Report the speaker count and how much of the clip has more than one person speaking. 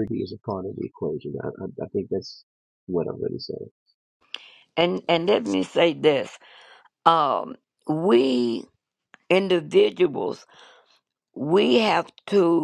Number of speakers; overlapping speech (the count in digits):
2, no overlap